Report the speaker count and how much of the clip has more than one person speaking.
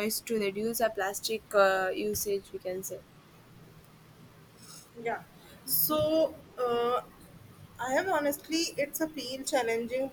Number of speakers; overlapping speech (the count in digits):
2, no overlap